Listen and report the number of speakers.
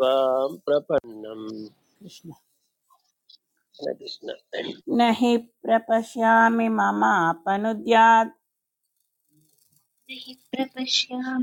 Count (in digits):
3